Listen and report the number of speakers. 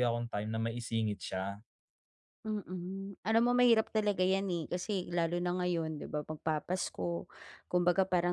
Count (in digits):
2